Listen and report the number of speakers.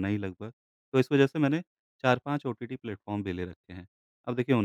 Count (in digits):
1